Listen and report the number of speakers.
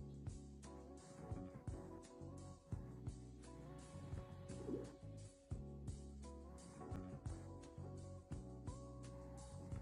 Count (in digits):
0